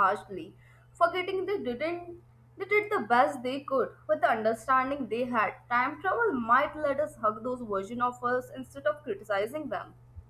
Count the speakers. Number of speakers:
one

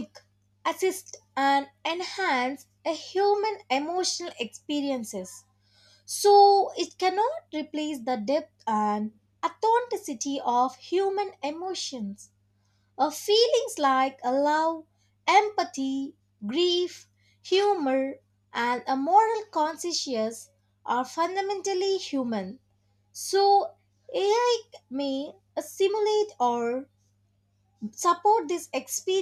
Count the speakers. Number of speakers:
one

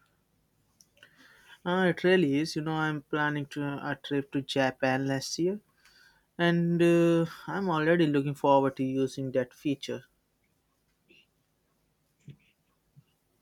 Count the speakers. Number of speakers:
one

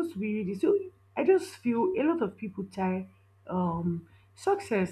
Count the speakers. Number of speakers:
one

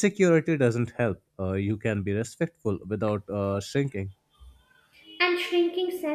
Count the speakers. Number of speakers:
two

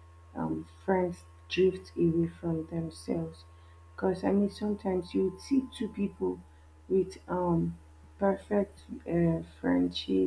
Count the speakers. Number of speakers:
one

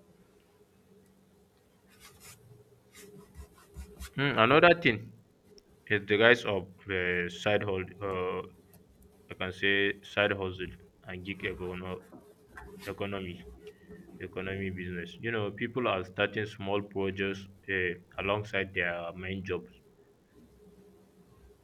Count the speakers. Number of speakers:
one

